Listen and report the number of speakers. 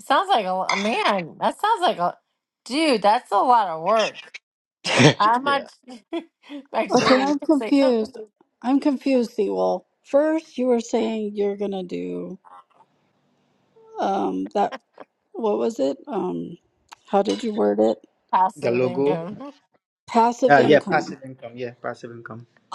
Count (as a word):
three